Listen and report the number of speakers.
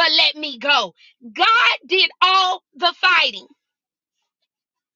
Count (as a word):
one